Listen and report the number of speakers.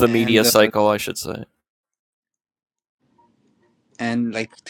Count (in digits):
2